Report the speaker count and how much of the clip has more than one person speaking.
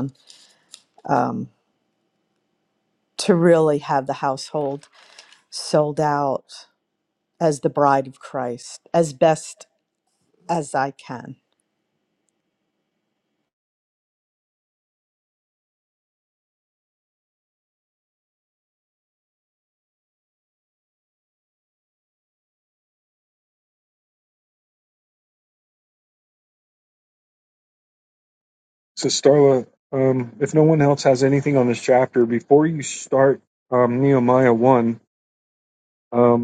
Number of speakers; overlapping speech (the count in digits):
2, no overlap